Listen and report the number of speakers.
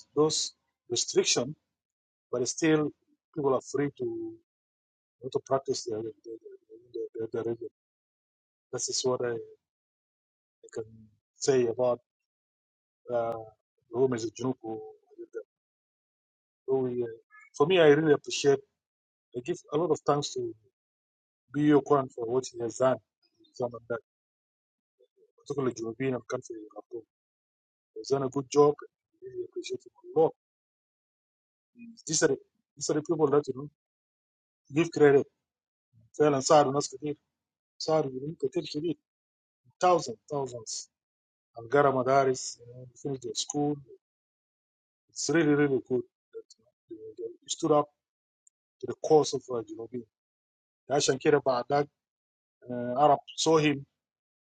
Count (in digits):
1